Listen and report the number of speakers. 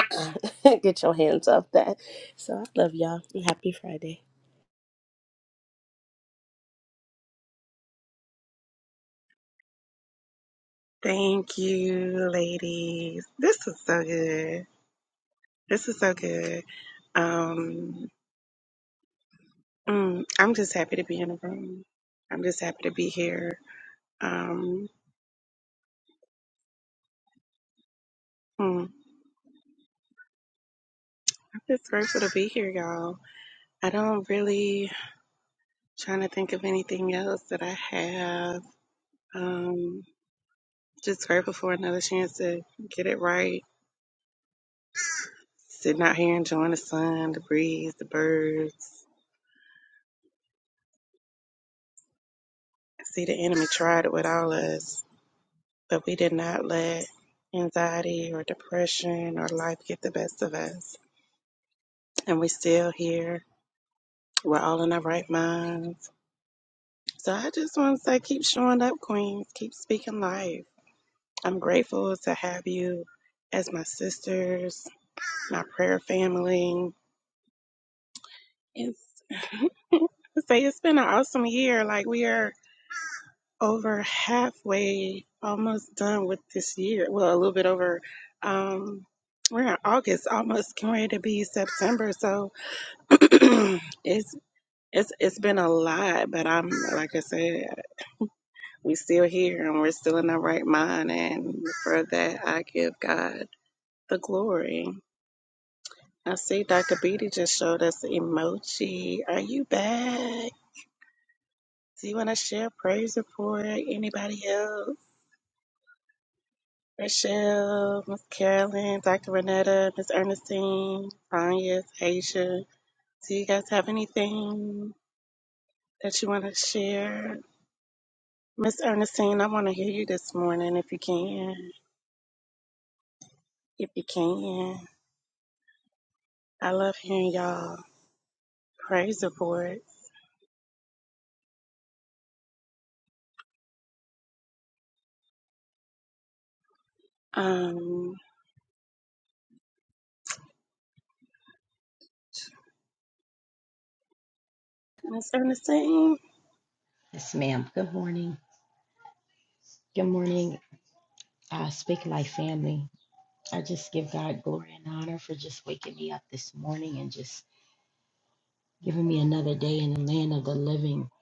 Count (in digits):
3